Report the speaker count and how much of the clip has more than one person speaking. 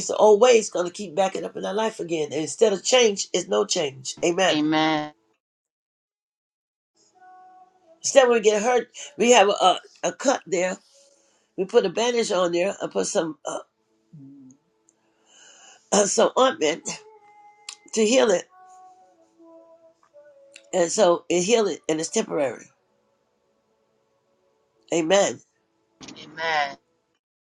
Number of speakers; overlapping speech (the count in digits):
2, under 1%